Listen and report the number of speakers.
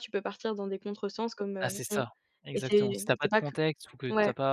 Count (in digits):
2